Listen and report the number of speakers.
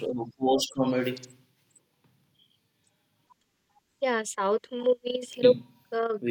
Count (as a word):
two